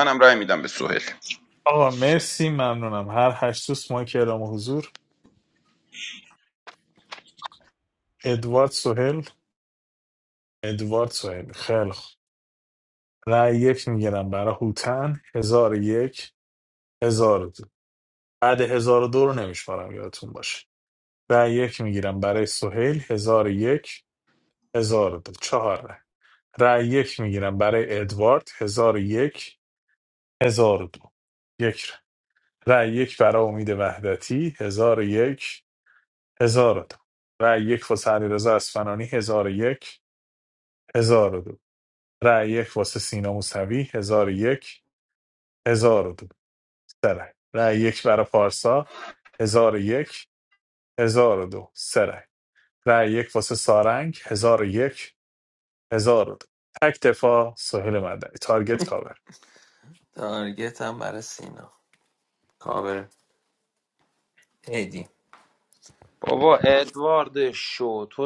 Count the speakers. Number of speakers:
four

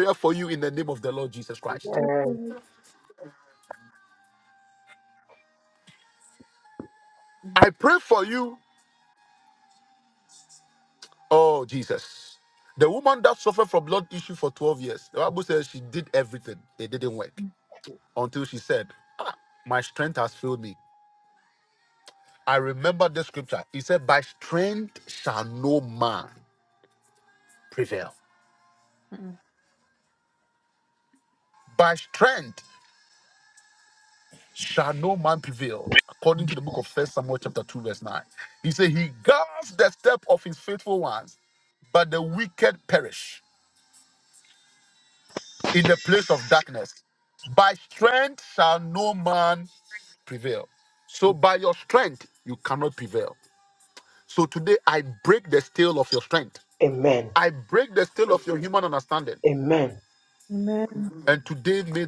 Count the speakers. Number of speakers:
three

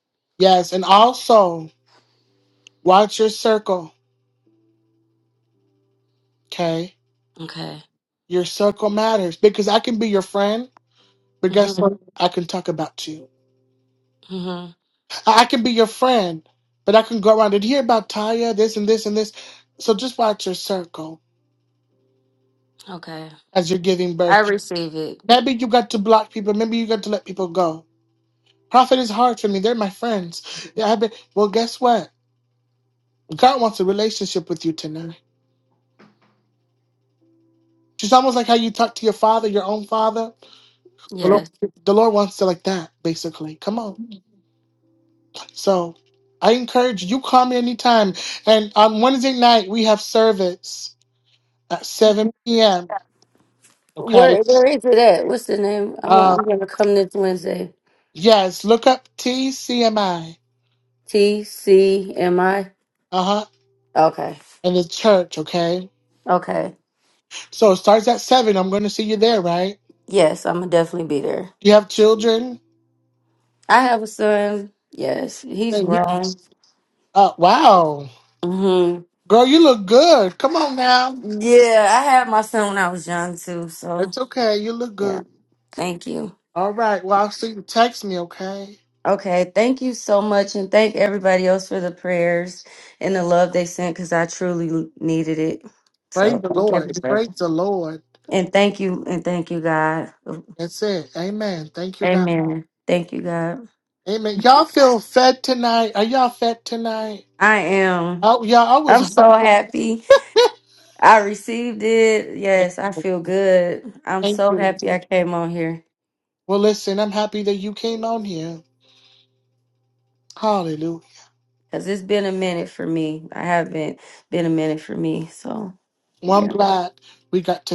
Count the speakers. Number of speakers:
two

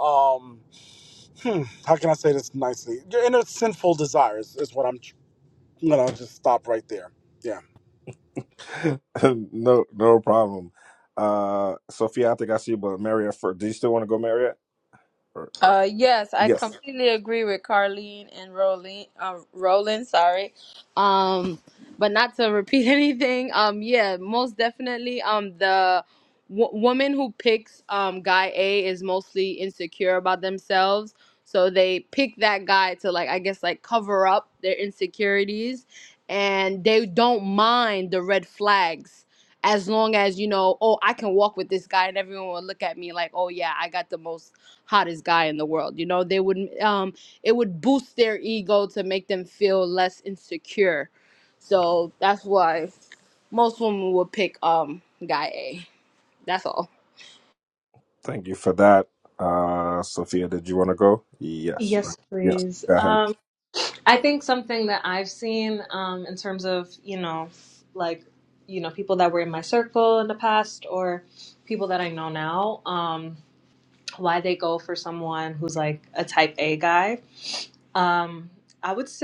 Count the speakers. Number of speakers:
four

